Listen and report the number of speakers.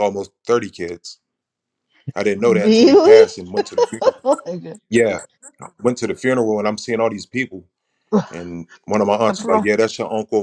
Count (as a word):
two